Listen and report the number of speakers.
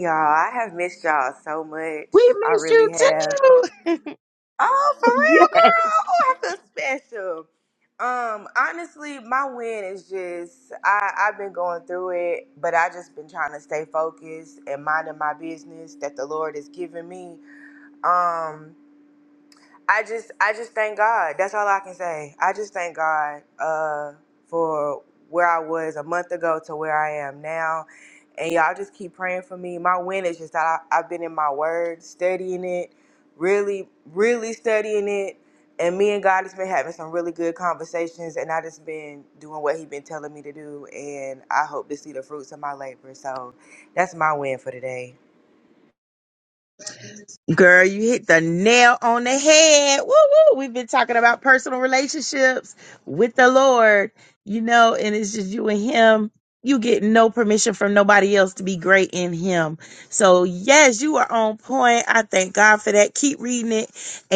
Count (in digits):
2